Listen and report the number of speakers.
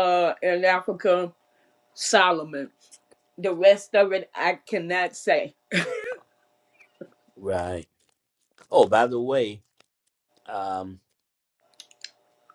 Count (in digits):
2